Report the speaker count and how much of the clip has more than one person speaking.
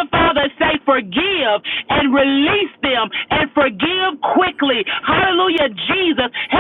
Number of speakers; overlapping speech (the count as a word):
one, no overlap